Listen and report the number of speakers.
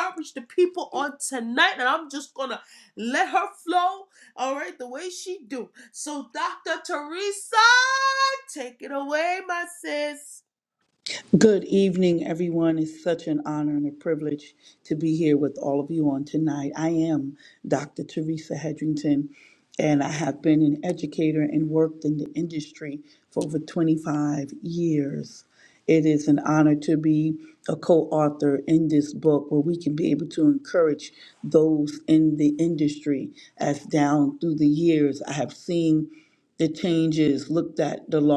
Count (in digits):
2